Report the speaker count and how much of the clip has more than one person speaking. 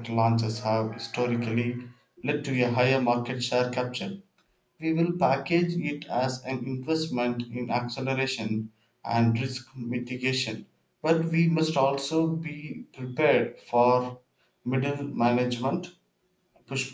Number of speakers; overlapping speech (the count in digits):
1, no overlap